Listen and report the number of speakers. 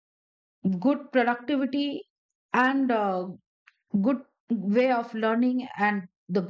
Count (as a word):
one